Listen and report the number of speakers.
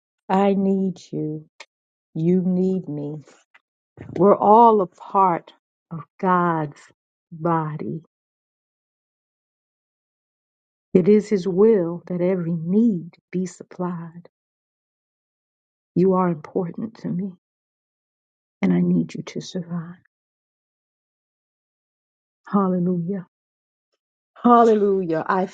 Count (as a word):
one